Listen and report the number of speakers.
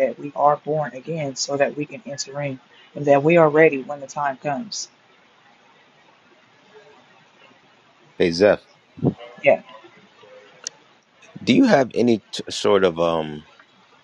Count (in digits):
2